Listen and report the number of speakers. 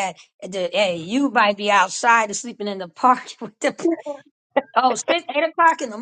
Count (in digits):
1